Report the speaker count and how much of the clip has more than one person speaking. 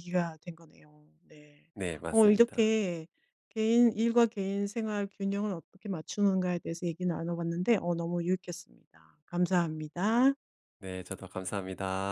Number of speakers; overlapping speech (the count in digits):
2, about 4%